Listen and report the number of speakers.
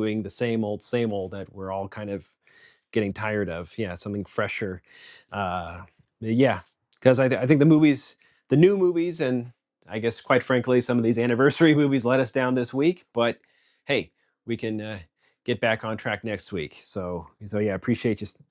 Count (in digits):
1